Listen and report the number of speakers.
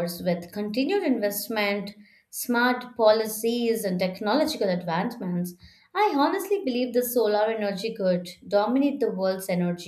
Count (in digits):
1